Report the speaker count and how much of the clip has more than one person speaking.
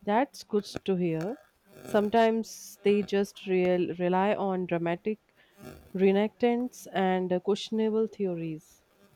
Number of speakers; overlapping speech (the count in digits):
1, no overlap